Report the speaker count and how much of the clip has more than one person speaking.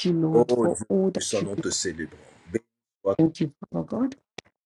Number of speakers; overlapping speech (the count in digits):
2, about 21%